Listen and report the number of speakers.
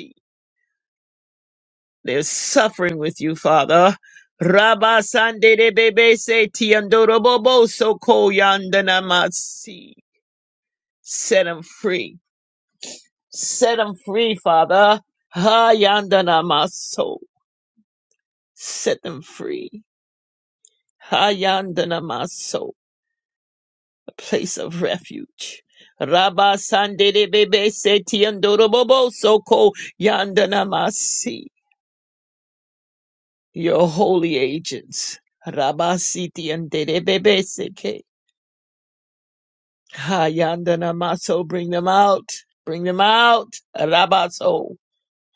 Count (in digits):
1